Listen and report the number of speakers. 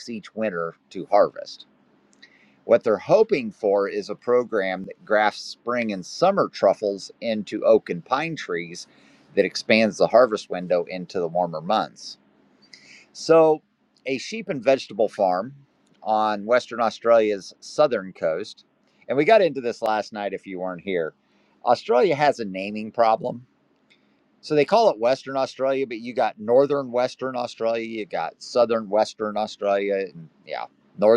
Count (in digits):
1